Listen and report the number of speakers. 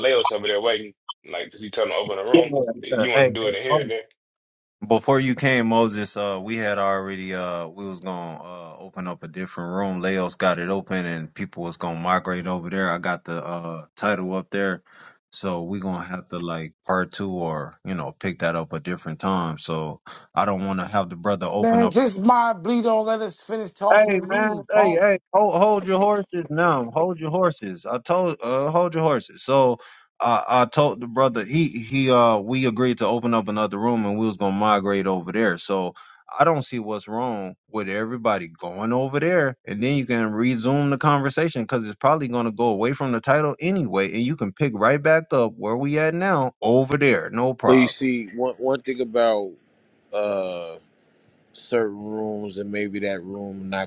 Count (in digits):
4